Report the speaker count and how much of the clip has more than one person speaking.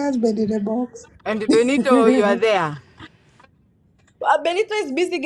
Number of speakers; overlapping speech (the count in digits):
3, no overlap